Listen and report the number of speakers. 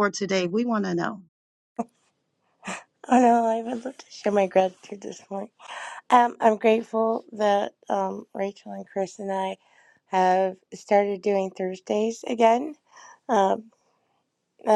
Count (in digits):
2